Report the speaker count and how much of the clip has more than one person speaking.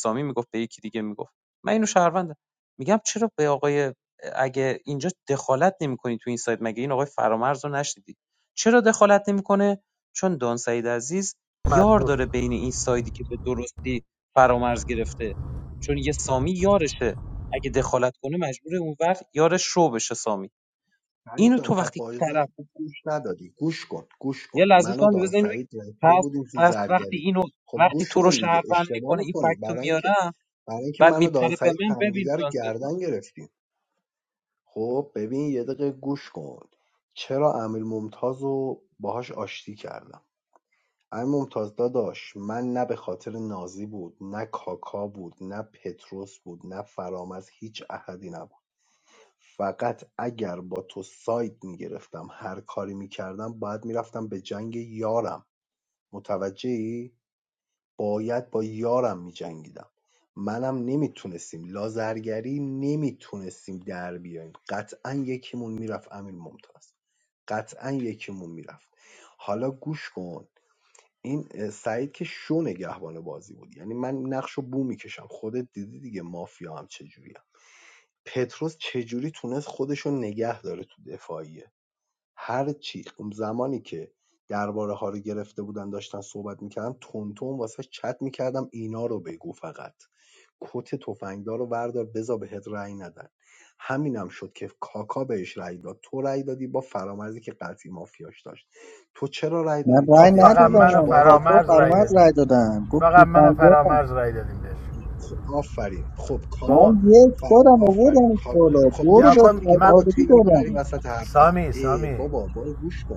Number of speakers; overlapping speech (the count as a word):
four, about 14%